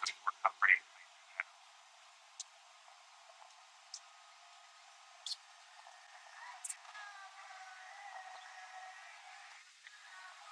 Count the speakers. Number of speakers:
zero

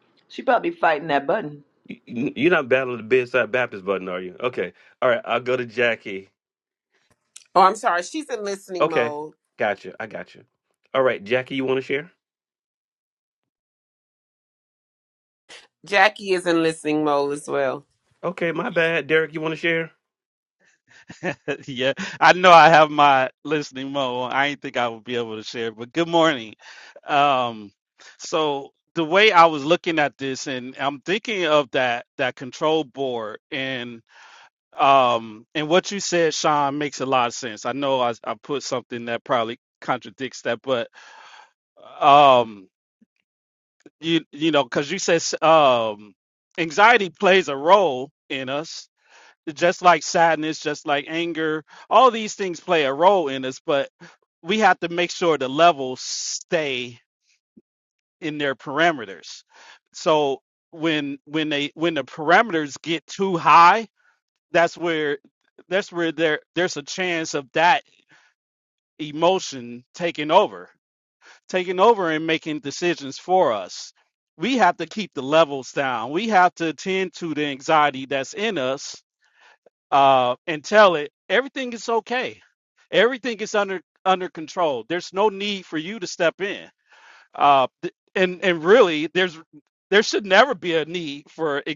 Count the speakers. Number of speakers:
four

